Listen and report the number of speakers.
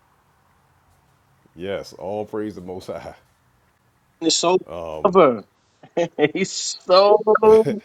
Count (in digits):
2